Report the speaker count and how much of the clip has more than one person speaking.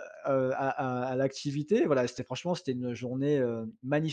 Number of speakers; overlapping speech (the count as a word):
one, no overlap